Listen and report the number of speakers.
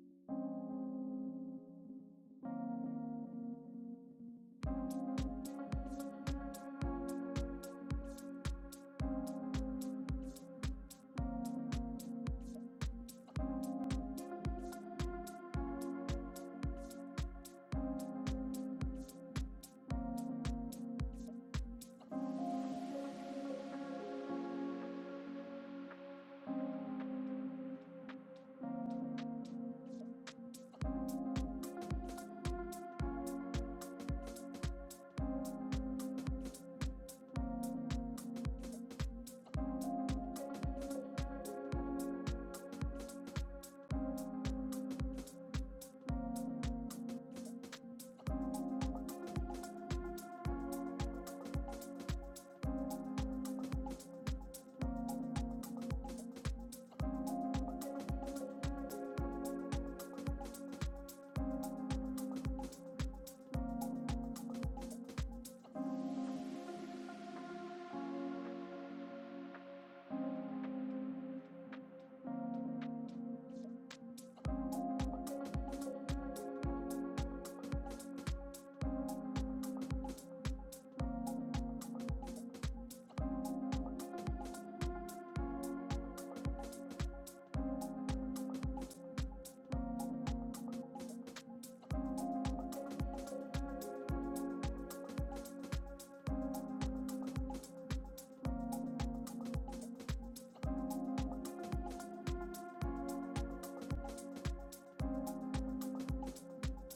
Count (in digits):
0